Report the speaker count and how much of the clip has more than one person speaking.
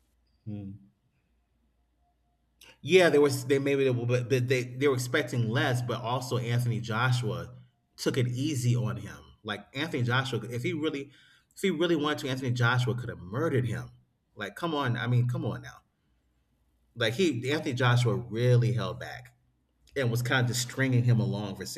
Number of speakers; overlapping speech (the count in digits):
1, no overlap